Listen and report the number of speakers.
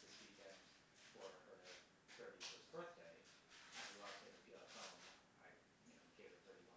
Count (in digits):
1